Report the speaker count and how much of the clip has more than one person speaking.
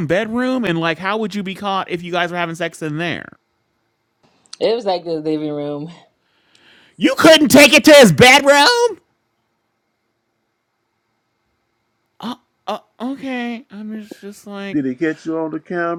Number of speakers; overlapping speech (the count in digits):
3, under 1%